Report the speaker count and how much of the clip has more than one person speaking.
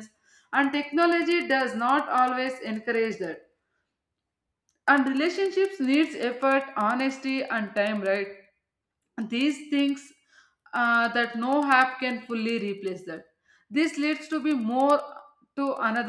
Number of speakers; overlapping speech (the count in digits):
1, no overlap